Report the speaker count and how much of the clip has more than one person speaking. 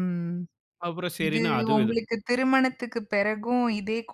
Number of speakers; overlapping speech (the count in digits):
2, about 17%